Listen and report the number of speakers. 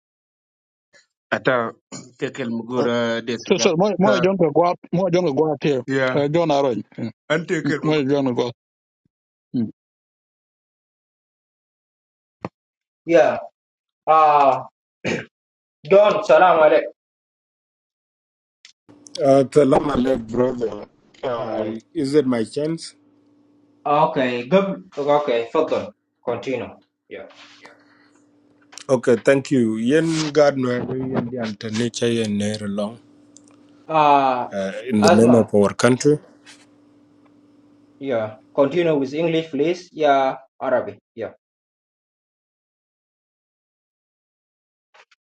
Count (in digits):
4